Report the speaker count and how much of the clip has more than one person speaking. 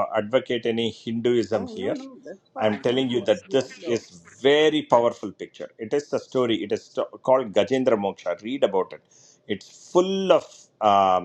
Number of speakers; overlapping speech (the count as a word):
two, about 17%